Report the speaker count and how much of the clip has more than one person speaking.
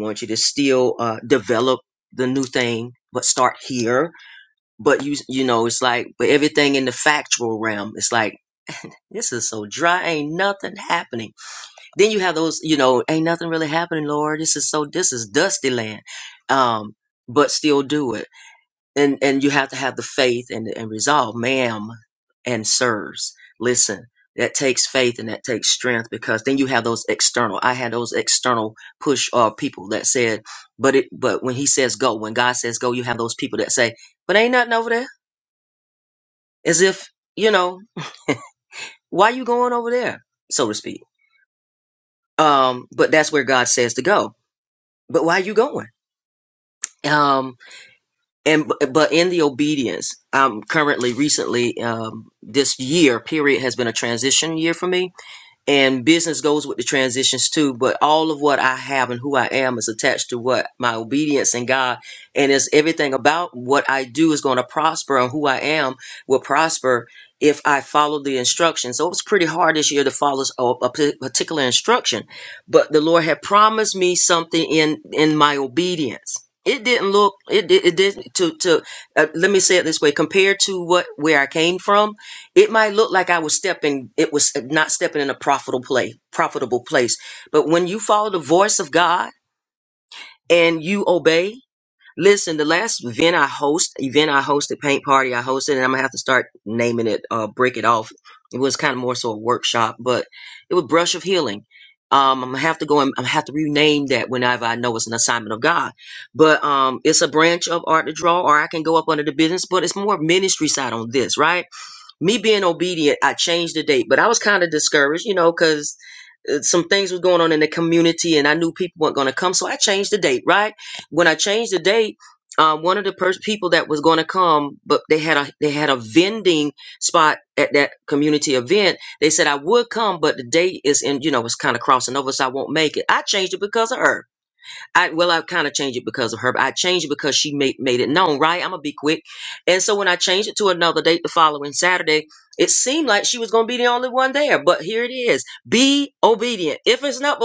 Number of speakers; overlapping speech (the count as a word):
one, no overlap